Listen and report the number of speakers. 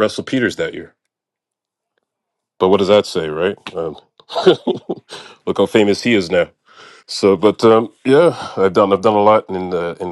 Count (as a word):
one